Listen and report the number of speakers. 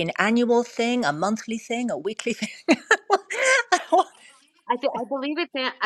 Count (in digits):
2